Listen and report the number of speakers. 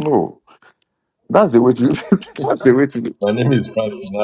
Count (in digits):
2